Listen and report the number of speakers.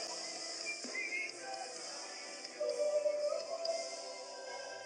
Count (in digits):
0